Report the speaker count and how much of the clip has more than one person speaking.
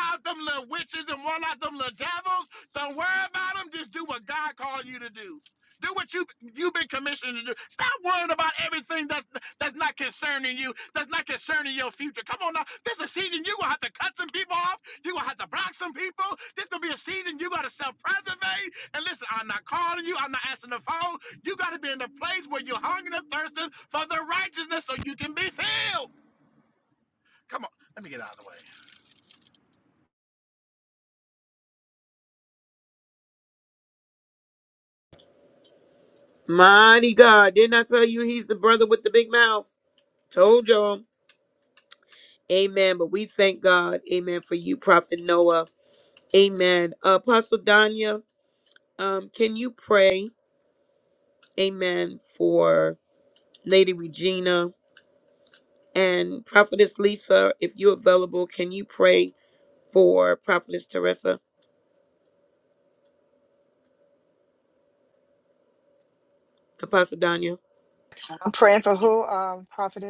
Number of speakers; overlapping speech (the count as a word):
three, no overlap